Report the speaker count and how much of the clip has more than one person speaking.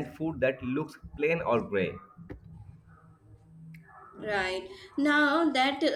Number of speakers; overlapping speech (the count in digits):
2, no overlap